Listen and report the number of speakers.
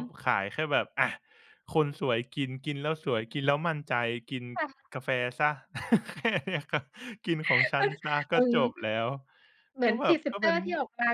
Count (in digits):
2